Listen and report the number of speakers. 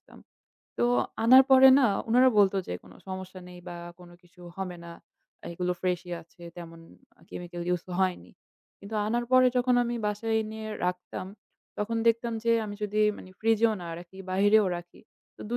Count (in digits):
1